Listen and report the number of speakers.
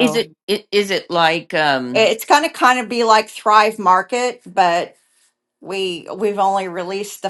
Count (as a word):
two